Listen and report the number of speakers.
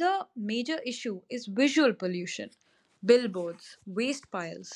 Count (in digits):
1